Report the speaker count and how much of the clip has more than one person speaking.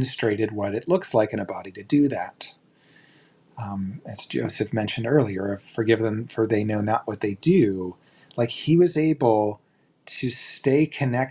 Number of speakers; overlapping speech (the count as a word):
one, no overlap